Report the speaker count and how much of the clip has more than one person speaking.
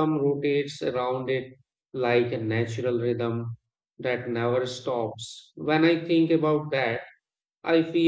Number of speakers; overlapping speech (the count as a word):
one, no overlap